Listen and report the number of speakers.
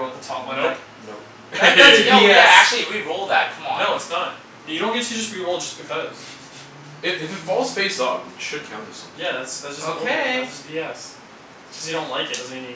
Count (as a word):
four